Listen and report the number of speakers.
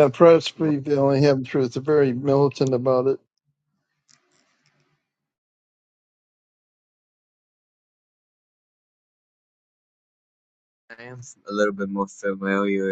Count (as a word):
two